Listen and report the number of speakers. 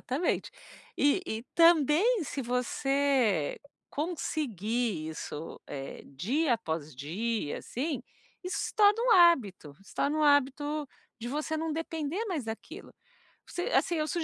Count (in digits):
1